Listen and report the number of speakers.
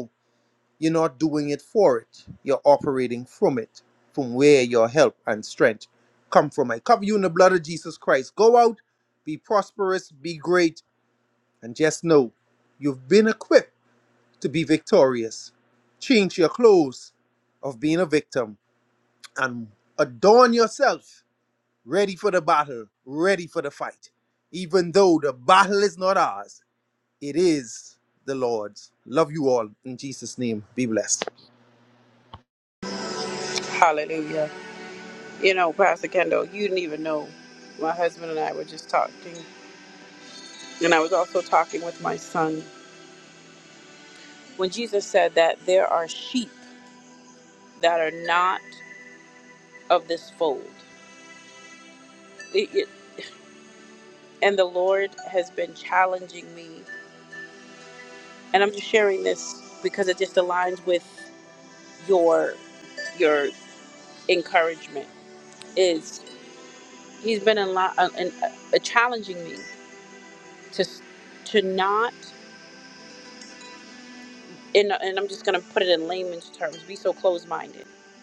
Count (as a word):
two